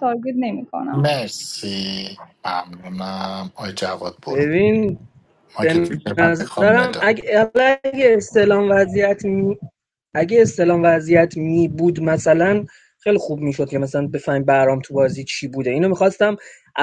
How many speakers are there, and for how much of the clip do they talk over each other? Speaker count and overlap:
three, about 11%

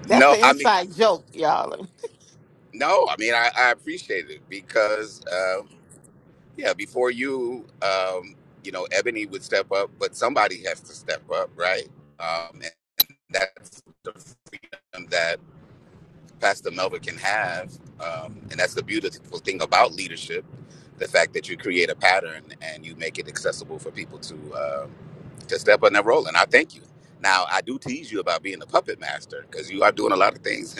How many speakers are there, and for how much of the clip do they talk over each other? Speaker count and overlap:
two, about 2%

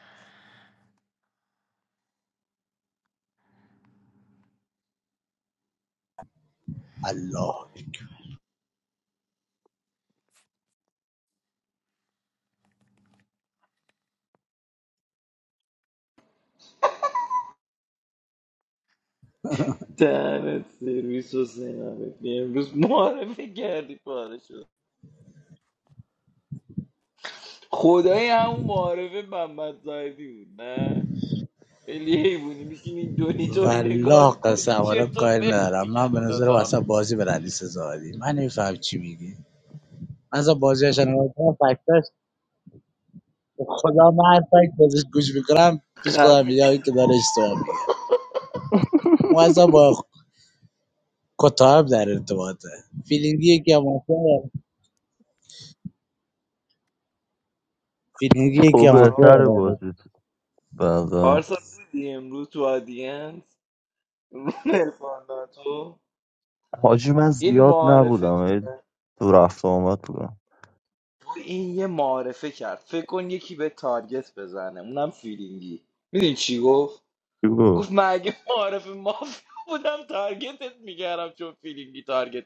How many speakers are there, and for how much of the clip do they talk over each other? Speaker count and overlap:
three, about 8%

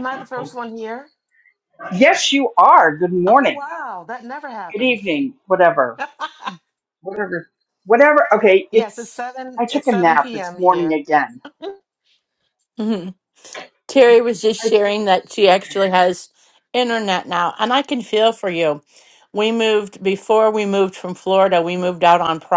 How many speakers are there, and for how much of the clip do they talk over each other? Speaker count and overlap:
three, about 9%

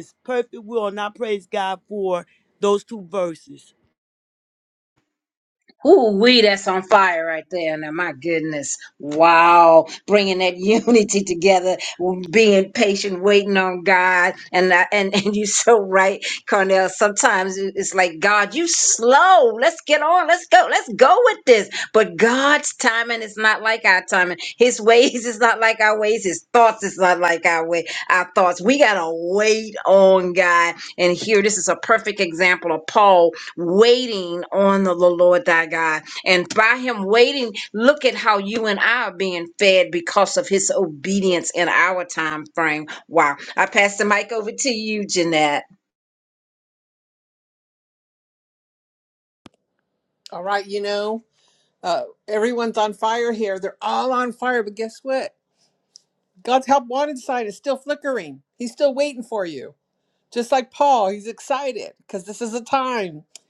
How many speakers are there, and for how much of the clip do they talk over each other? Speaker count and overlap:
three, no overlap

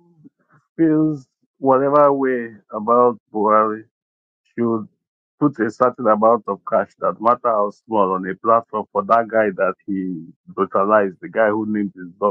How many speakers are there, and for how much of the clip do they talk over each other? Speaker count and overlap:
one, no overlap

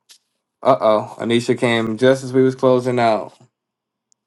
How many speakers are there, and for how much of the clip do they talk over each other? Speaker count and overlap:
one, no overlap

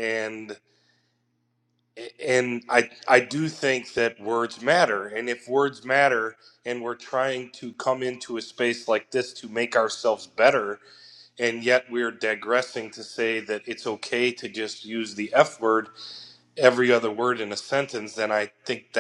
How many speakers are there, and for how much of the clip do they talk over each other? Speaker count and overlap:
one, no overlap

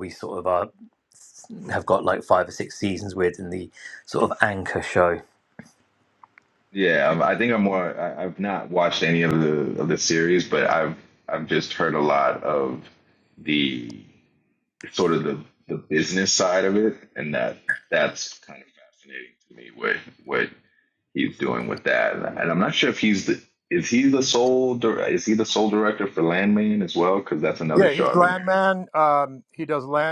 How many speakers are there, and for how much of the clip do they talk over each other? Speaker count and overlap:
three, about 2%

